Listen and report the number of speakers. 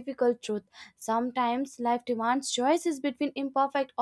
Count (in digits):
1